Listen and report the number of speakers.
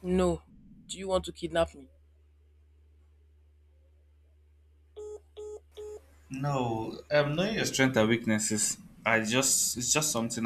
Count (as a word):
two